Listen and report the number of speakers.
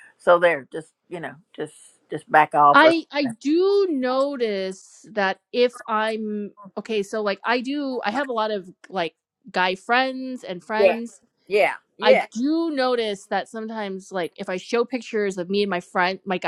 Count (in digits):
2